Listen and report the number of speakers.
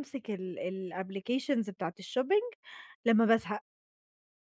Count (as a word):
one